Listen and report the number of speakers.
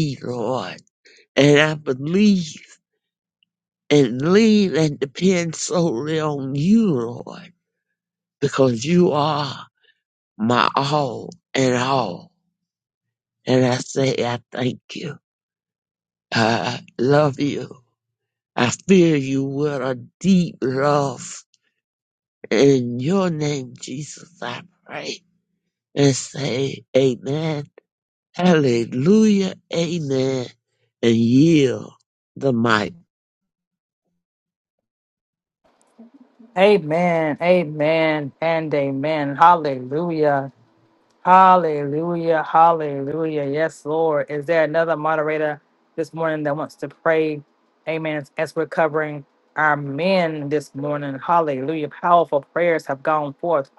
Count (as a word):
two